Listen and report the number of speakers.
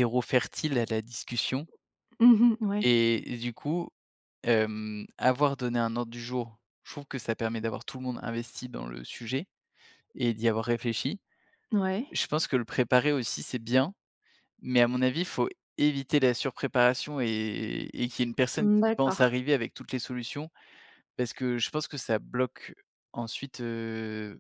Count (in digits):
2